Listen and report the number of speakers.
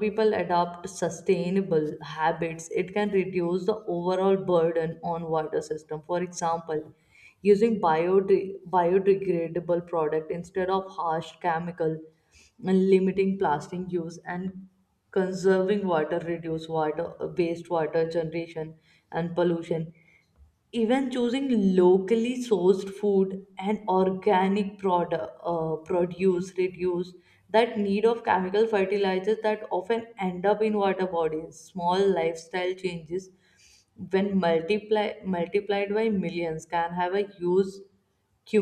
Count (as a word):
one